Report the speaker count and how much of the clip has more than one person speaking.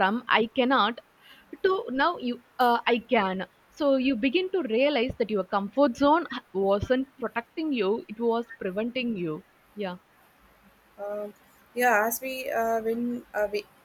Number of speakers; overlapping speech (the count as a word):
two, no overlap